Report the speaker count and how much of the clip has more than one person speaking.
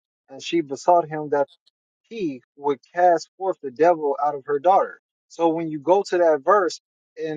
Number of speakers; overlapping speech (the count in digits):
1, no overlap